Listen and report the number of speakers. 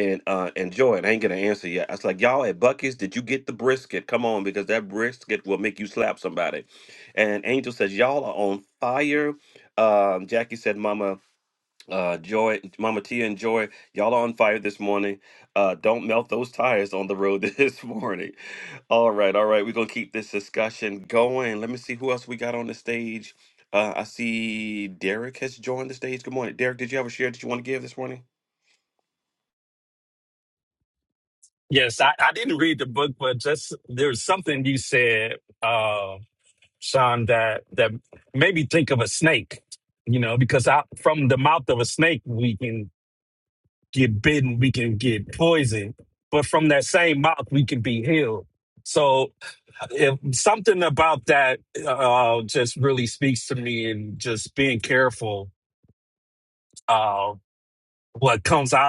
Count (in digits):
2